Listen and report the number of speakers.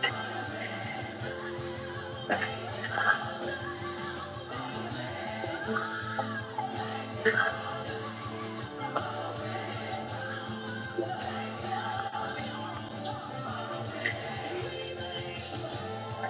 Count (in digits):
0